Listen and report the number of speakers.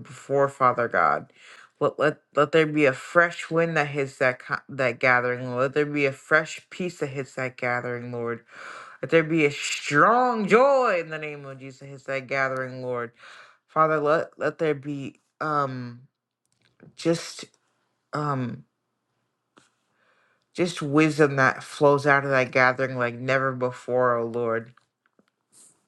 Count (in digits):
1